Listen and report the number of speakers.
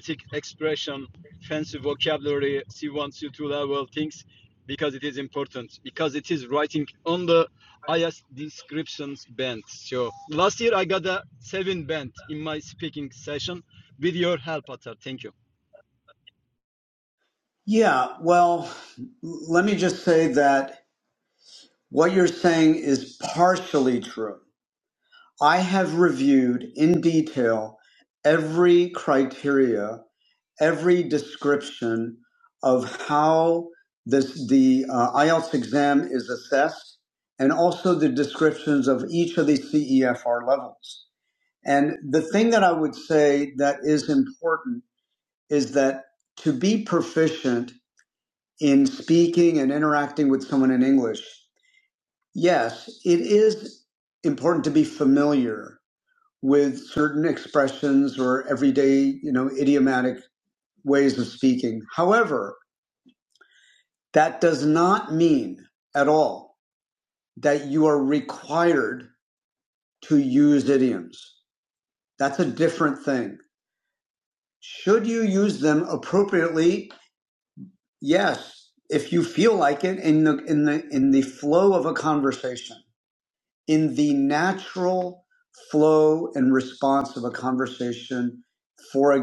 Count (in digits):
2